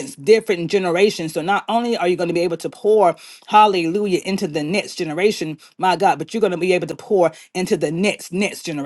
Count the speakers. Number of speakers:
1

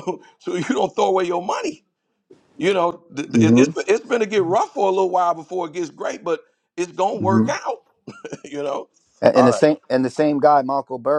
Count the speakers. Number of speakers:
2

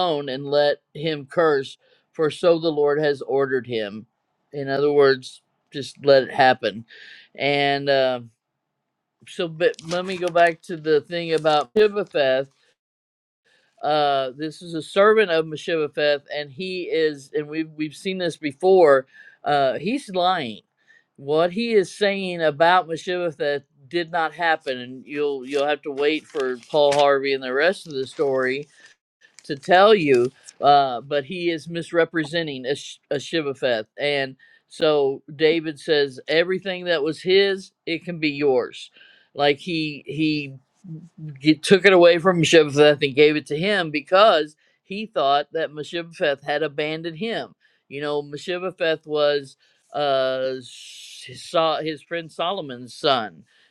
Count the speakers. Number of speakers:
1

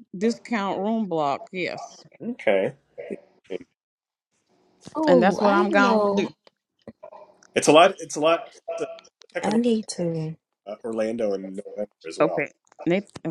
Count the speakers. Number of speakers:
3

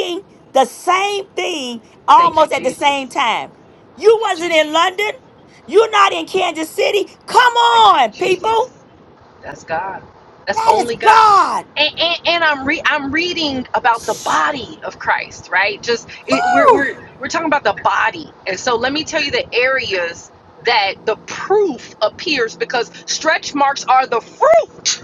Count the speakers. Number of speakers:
2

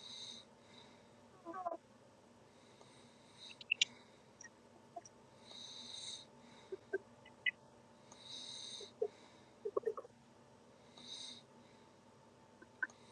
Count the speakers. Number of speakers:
0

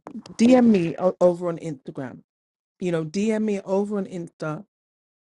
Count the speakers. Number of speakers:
1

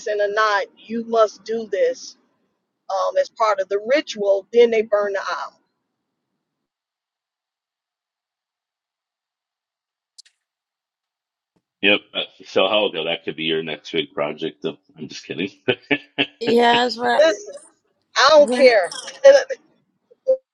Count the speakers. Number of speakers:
3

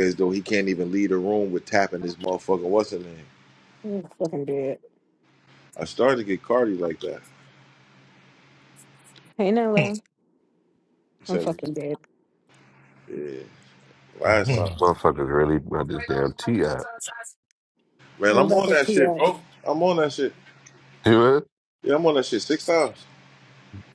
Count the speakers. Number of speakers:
3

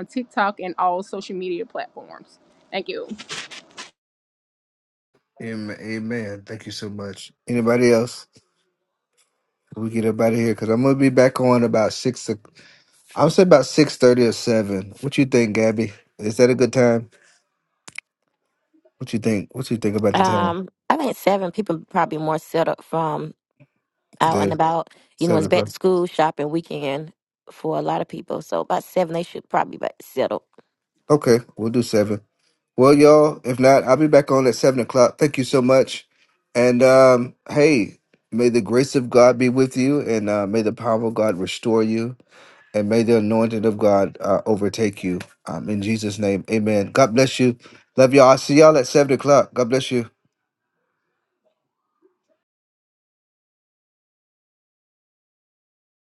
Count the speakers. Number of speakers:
3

